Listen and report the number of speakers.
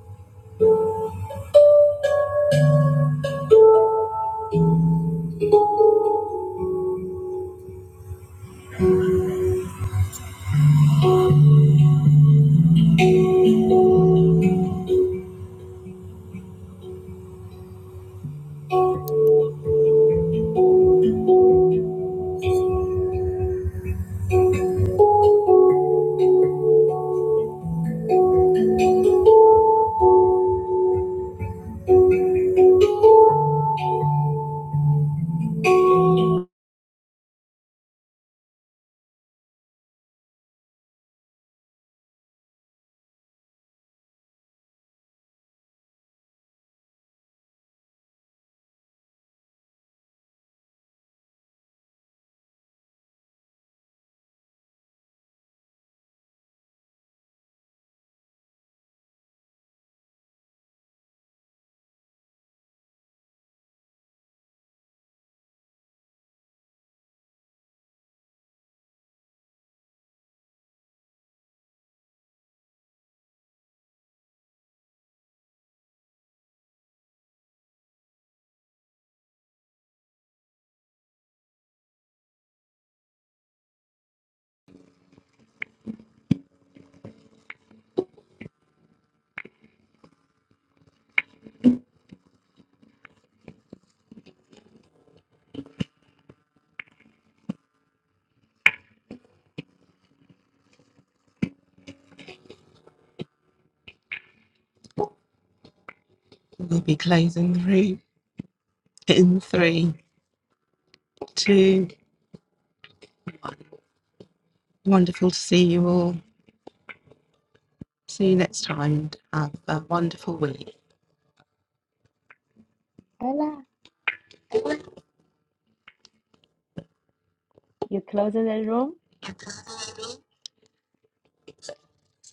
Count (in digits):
2